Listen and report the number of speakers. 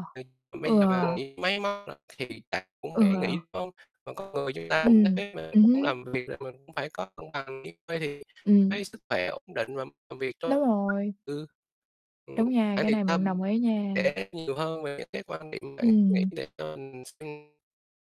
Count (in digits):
2